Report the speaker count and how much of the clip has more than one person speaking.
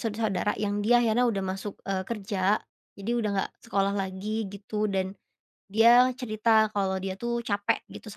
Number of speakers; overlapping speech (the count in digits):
1, no overlap